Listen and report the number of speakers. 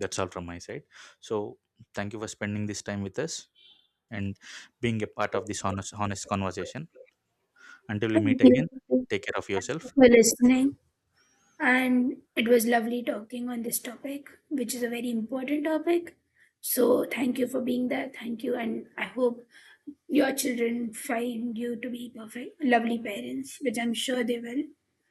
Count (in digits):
2